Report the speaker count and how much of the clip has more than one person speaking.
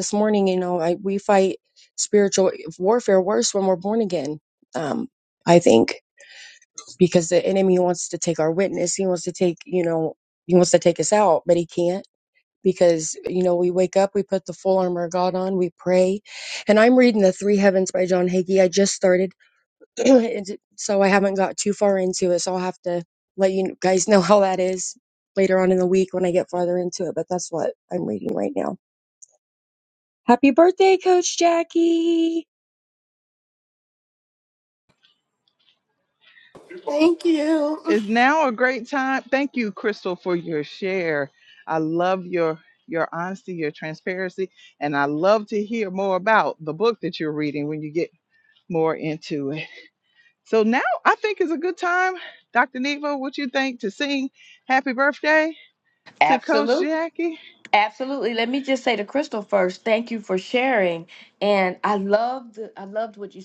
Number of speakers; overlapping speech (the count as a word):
four, about 1%